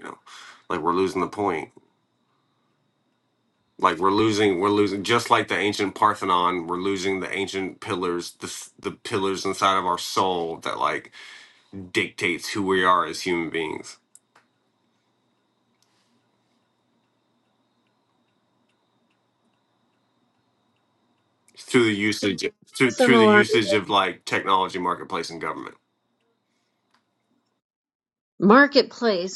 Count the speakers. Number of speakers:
2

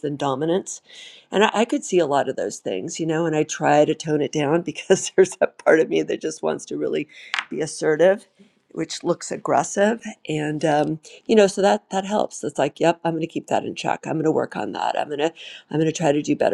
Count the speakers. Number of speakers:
1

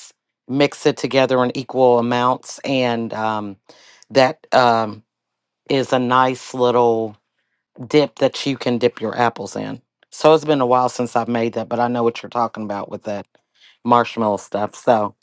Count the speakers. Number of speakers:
1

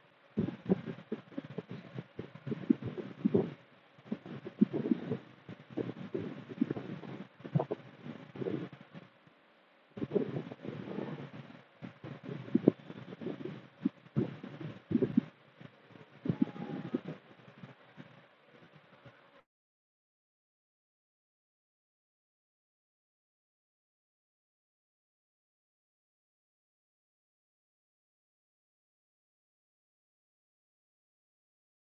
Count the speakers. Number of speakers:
0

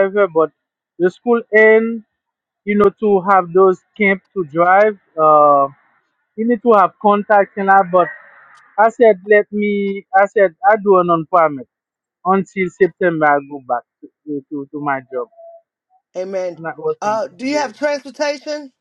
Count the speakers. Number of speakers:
2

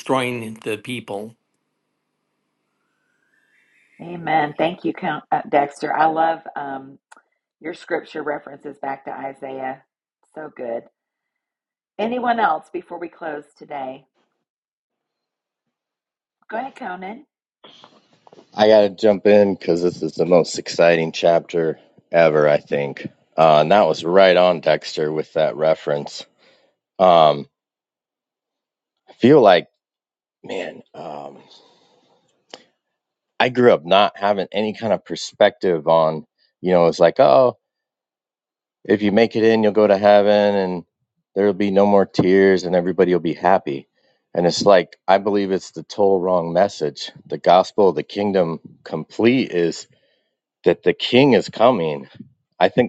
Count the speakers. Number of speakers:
3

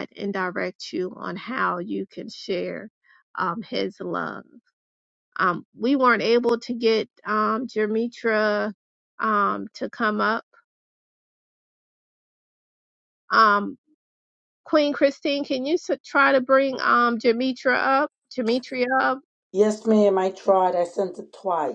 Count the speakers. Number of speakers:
2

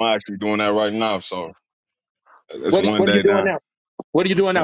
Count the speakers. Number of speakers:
2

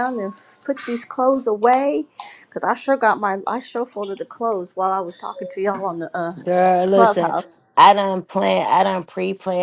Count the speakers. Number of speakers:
2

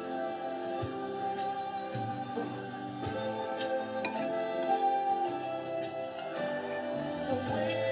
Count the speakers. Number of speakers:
0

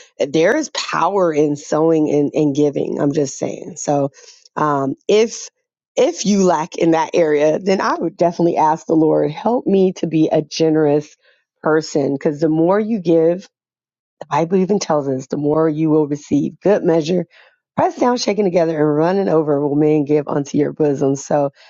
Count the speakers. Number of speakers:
1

